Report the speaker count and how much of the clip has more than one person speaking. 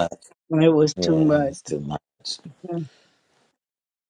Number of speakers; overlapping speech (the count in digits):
2, about 14%